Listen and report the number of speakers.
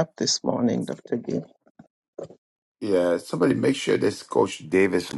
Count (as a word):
two